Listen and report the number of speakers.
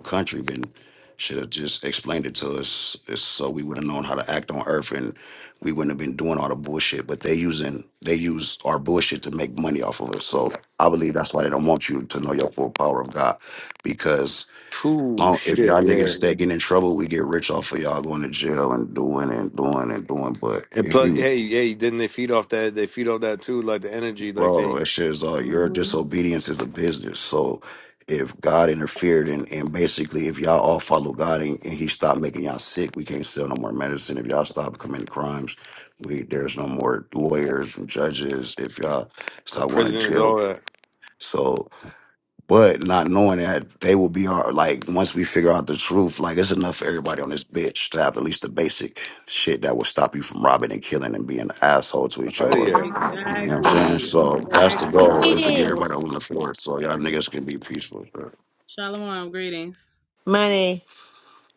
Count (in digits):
4